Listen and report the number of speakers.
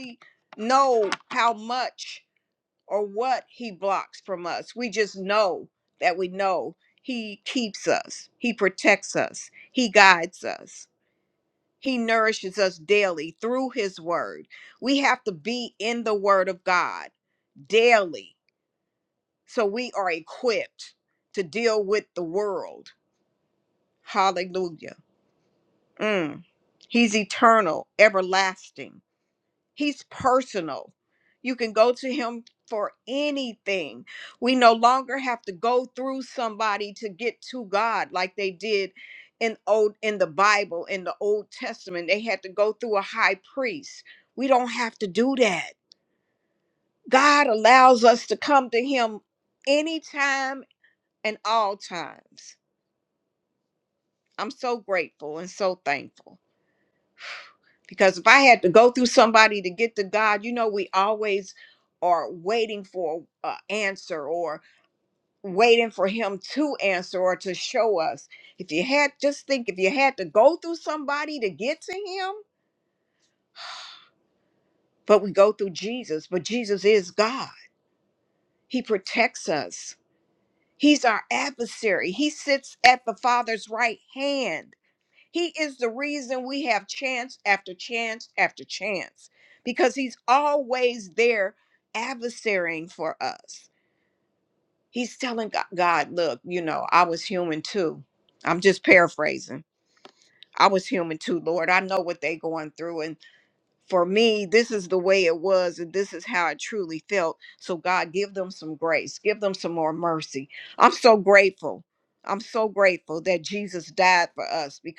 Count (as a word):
one